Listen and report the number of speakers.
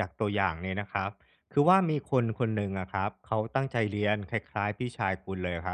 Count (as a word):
one